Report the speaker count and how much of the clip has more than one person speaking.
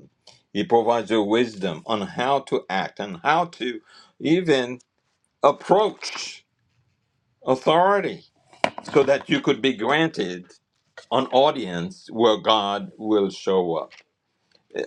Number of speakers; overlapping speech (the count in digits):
1, no overlap